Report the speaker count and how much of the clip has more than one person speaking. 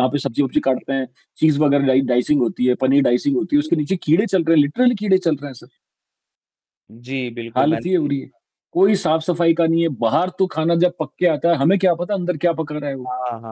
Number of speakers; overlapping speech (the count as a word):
two, about 8%